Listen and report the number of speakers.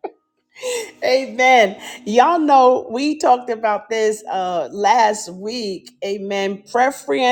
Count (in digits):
1